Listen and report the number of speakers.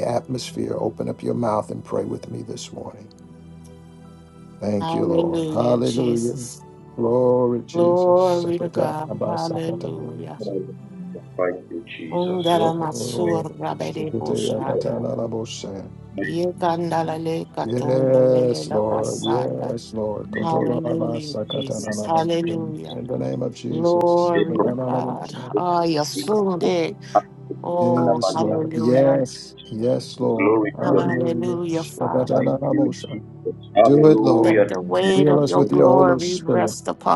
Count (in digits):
3